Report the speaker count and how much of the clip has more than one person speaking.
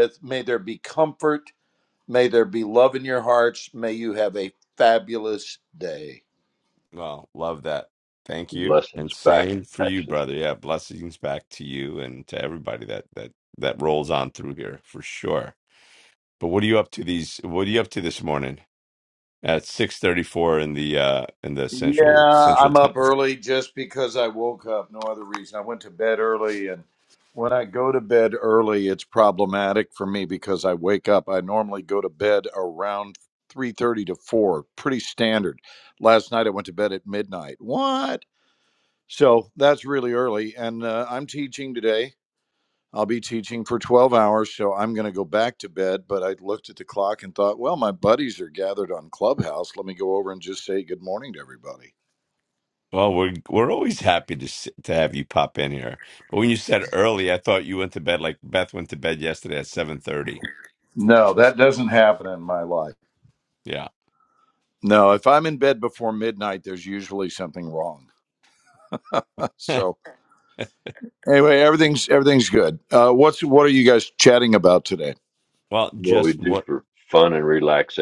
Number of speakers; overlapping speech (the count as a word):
three, about 4%